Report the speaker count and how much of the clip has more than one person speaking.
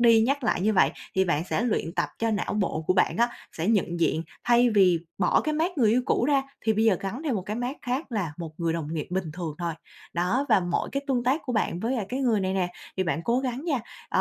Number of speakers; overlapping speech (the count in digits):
1, no overlap